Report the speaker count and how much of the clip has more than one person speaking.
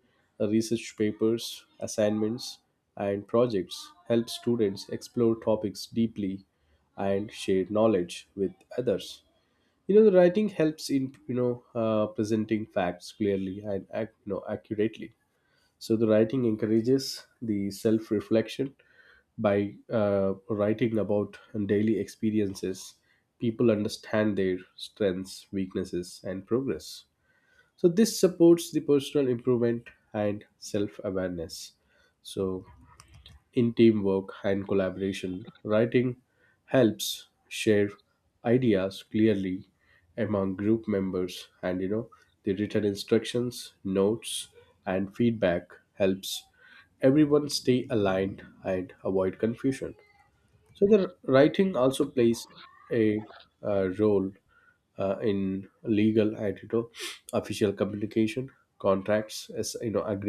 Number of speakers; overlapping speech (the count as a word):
one, no overlap